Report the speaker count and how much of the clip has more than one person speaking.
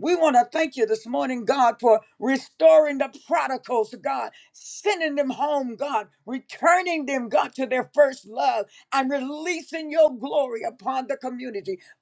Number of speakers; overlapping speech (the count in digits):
1, no overlap